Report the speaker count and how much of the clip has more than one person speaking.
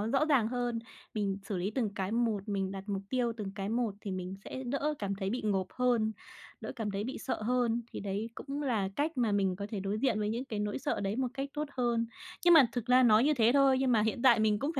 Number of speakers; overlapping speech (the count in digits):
1, no overlap